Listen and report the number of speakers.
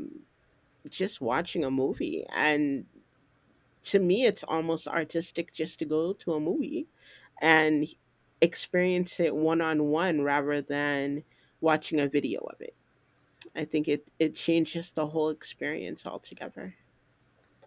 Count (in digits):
1